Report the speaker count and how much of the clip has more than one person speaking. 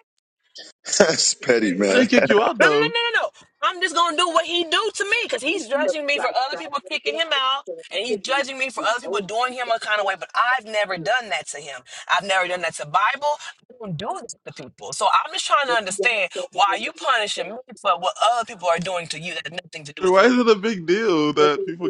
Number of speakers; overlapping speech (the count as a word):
three, about 4%